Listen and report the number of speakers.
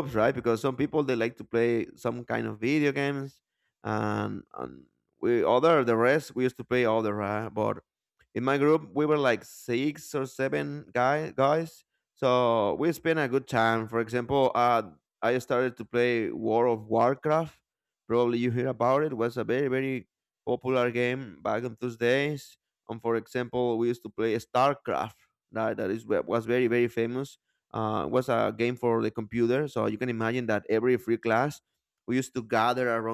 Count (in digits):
1